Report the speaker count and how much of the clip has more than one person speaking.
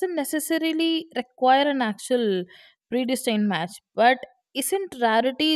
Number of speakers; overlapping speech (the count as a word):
one, no overlap